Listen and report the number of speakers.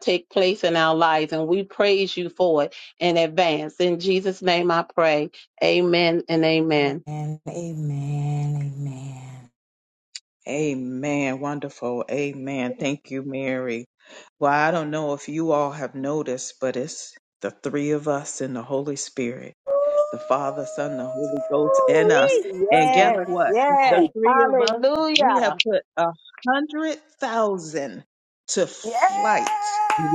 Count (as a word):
three